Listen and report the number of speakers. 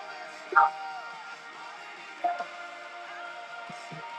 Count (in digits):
0